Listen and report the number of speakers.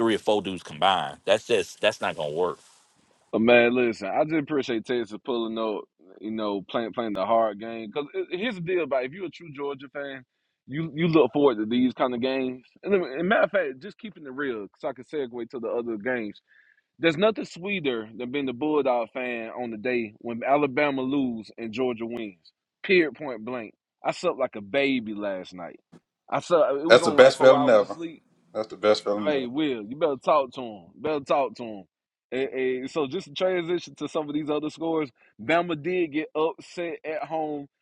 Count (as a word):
three